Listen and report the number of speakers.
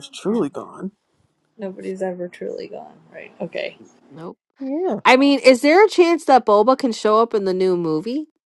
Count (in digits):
3